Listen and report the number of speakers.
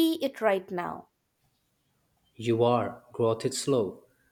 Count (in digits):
2